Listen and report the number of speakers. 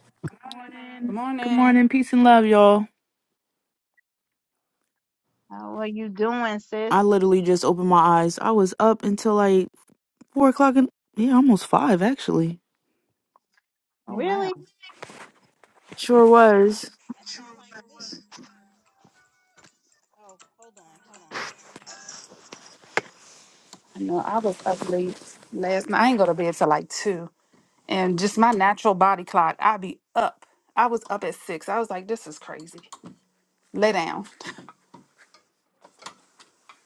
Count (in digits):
3